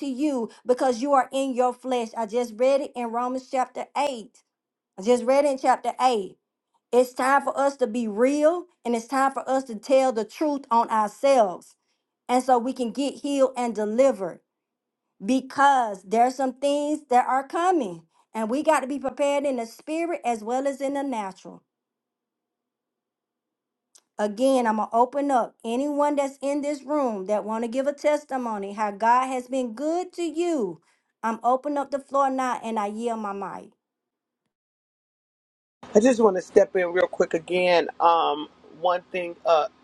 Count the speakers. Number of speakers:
2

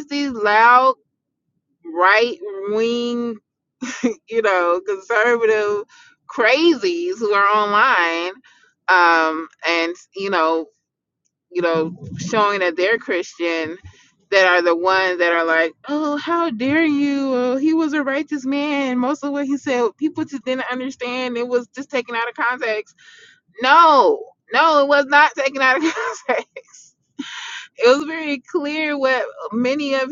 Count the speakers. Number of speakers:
1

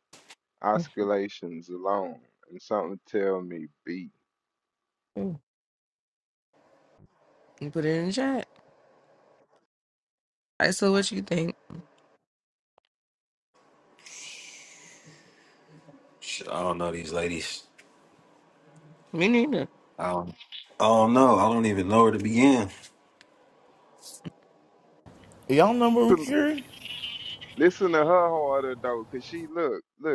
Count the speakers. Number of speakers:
4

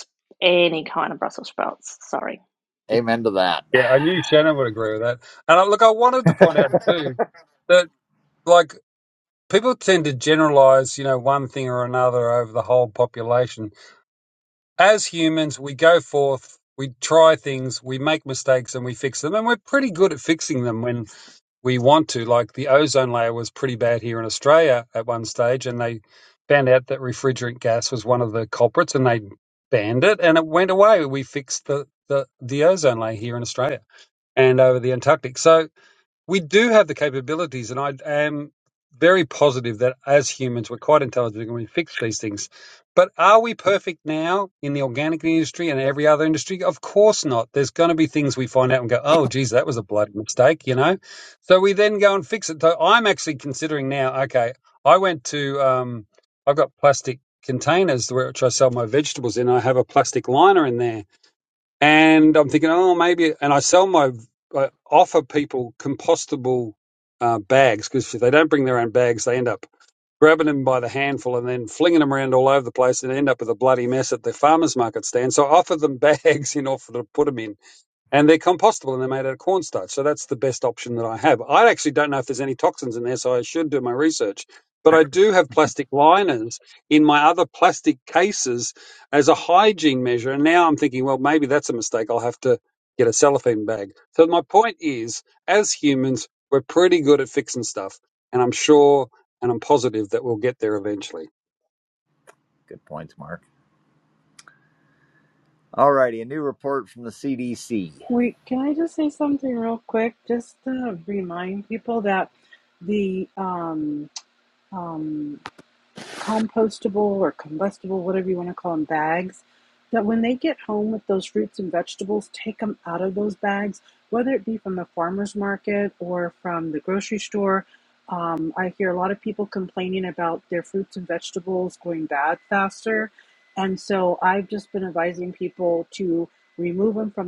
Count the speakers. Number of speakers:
4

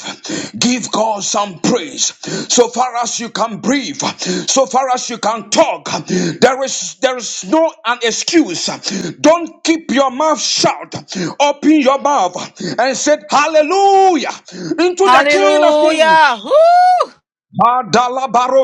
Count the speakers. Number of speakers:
2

